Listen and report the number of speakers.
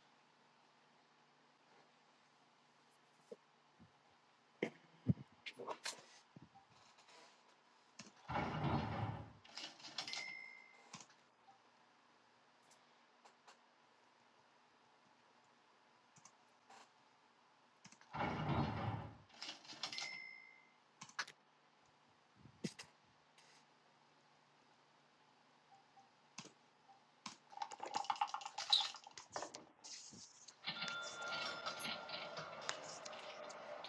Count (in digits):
0